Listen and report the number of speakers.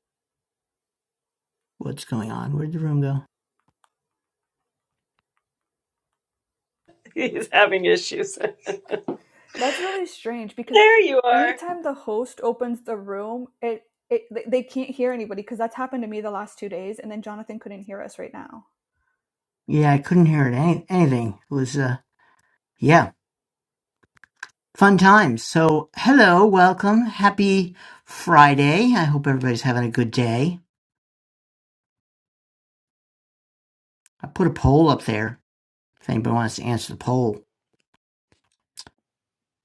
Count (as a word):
three